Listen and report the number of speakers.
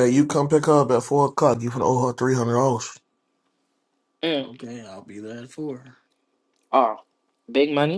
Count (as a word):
three